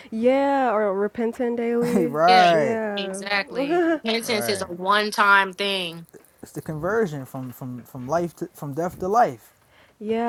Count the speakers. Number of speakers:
3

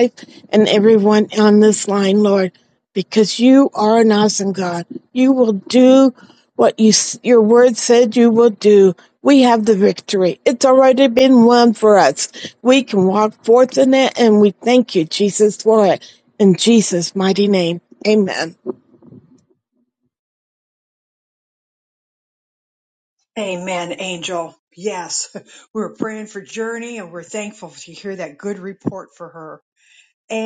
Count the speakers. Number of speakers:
2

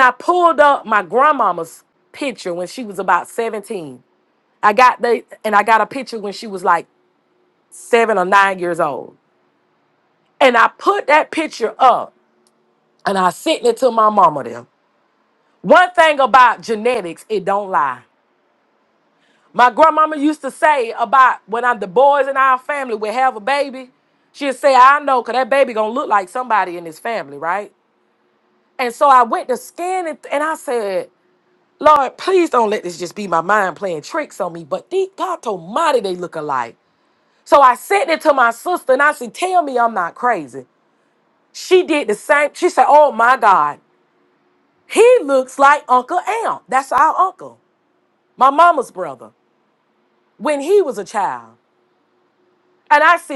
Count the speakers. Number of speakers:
1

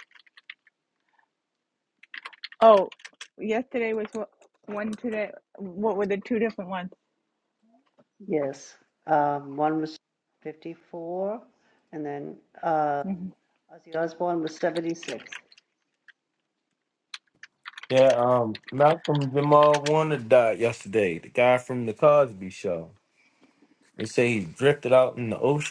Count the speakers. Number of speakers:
3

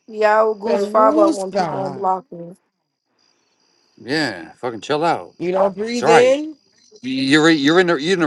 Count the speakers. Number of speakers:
3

